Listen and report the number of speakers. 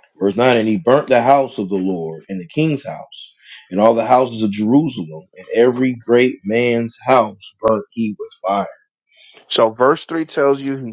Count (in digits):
2